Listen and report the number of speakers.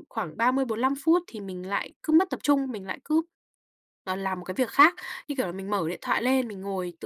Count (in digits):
1